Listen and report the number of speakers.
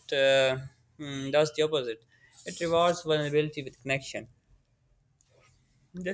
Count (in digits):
1